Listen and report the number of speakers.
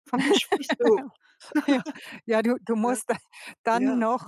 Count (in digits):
2